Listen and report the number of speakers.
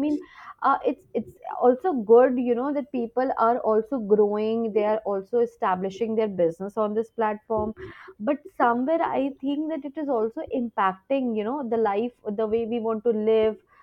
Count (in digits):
1